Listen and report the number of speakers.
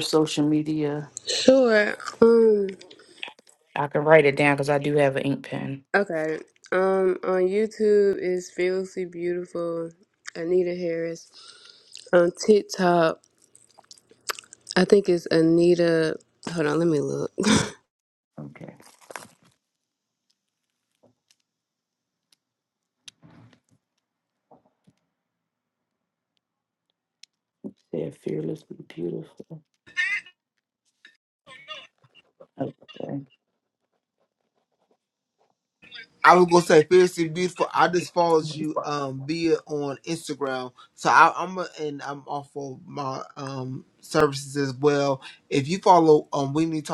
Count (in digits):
3